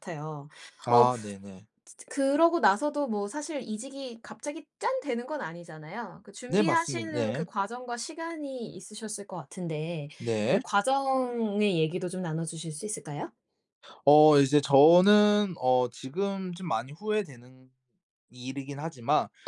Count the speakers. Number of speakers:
two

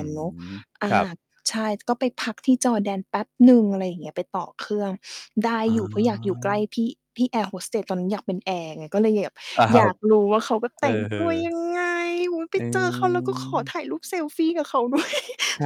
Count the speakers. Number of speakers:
two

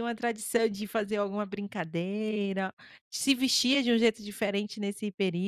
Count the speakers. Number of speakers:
one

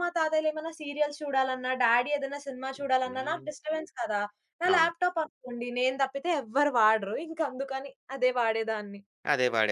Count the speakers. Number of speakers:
two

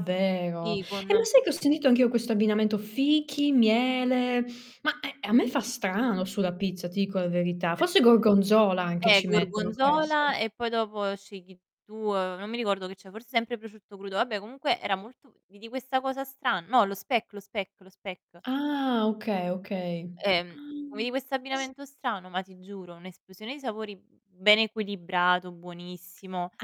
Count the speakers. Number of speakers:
two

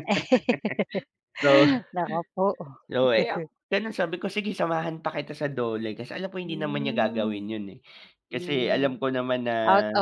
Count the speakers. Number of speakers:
two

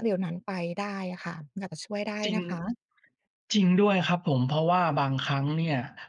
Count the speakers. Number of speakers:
two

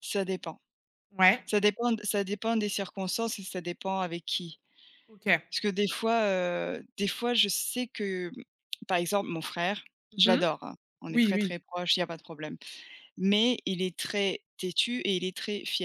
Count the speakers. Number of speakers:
two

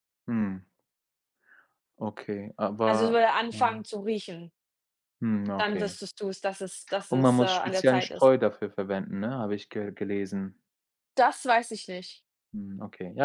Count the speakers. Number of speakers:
two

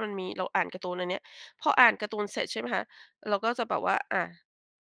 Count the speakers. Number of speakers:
one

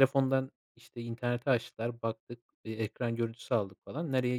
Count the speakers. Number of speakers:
one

